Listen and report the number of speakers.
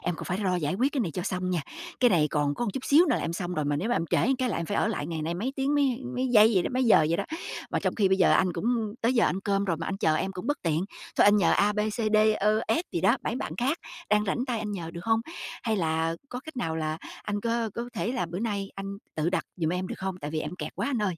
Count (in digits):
1